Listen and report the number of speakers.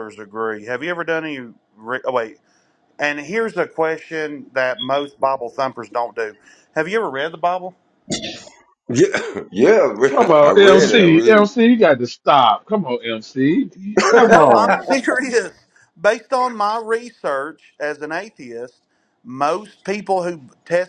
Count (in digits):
3